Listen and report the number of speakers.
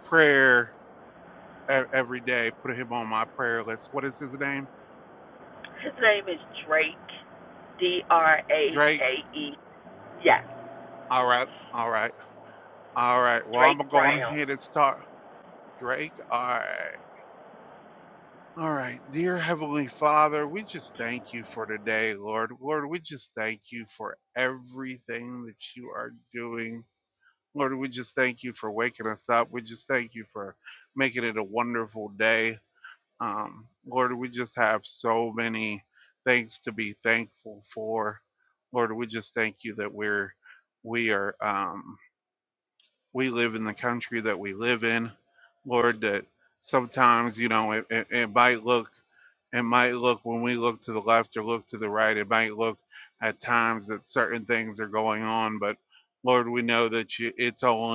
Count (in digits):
2